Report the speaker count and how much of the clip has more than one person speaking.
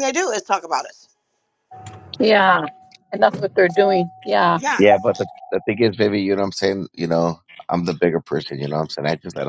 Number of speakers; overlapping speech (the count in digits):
3, about 1%